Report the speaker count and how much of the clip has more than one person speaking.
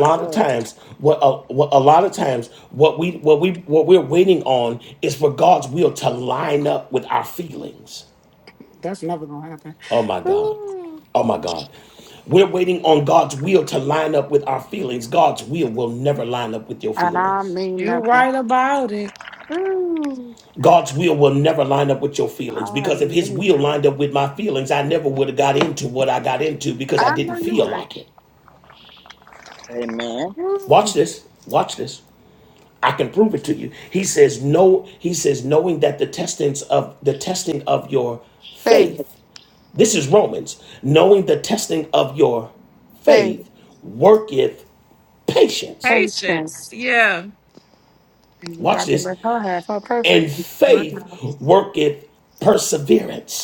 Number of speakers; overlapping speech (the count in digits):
4, about 12%